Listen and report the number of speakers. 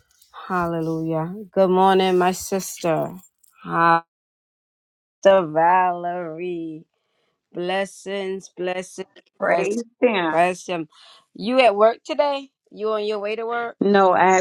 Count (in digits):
2